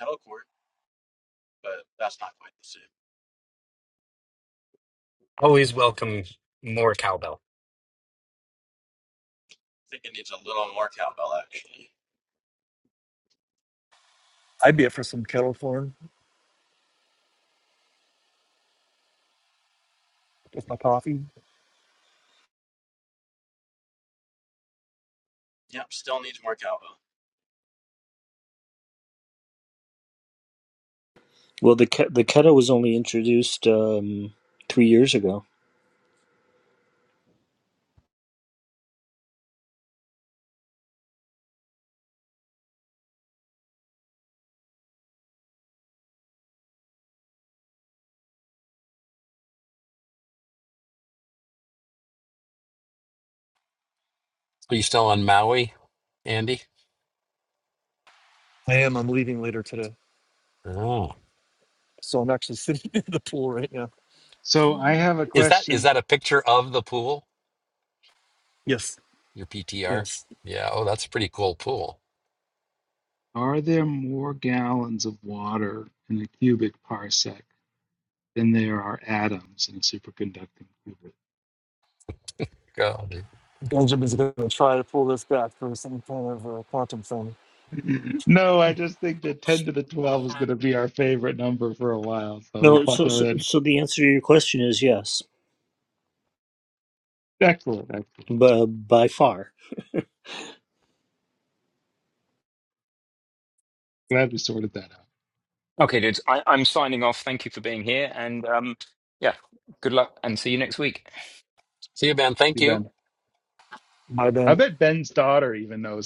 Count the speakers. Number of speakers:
7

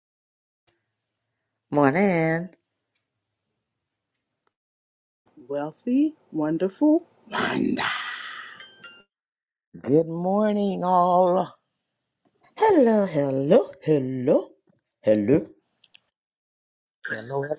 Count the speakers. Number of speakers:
3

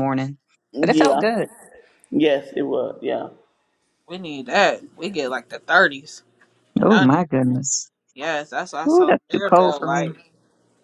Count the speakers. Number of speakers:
3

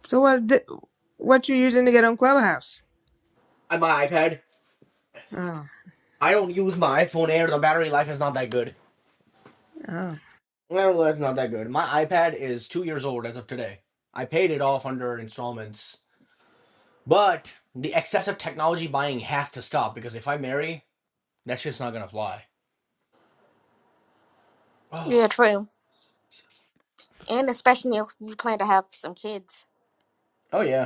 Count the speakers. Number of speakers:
3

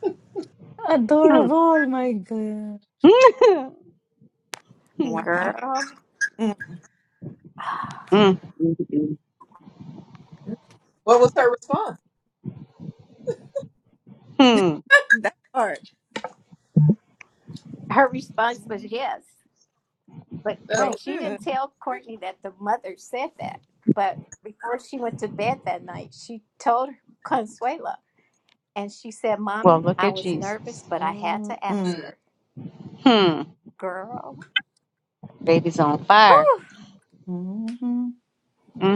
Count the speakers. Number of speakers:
5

